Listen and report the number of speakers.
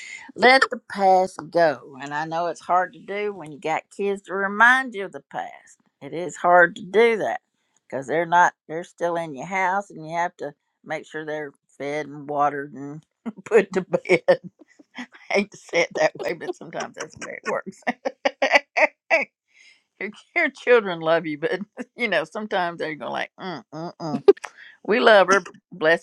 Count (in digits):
1